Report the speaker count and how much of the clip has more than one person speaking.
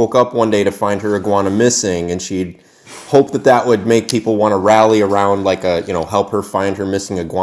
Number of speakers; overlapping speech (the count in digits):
1, no overlap